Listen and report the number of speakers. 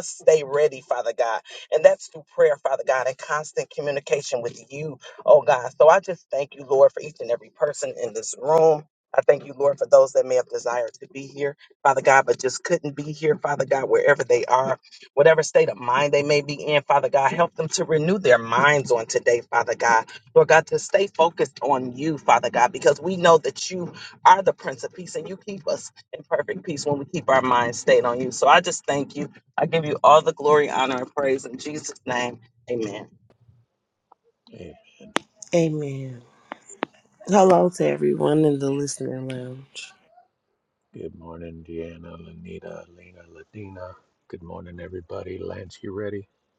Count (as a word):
three